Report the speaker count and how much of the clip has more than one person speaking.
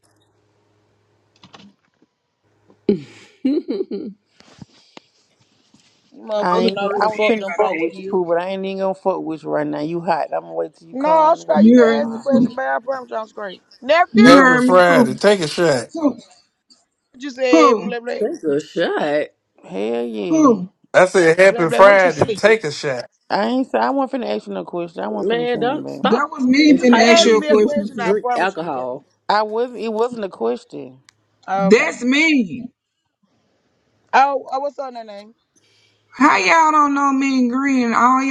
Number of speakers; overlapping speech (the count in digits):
5, about 25%